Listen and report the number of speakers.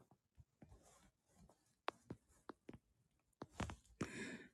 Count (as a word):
zero